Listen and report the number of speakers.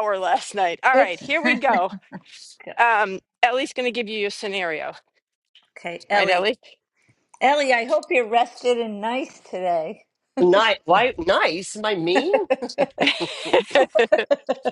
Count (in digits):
3